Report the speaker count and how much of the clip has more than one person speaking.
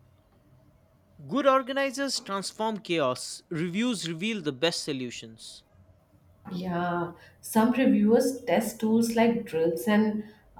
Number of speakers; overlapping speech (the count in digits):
2, no overlap